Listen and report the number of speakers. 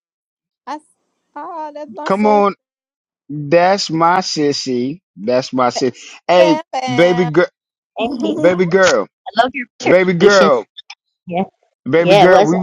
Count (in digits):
3